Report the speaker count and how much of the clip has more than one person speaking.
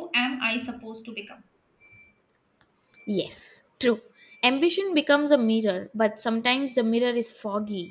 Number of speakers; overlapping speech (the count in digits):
2, no overlap